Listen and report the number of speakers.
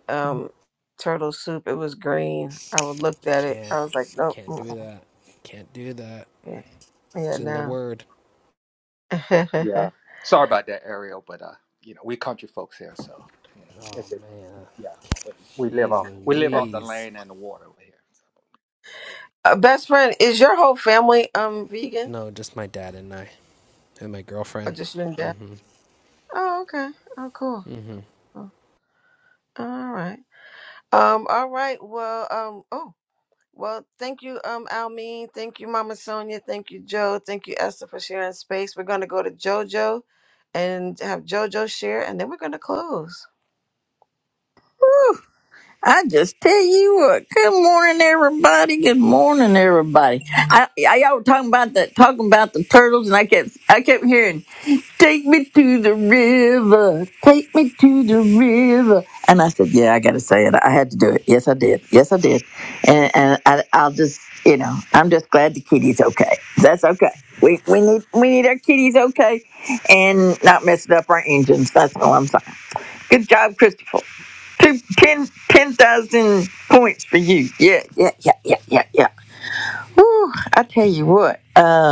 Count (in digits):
4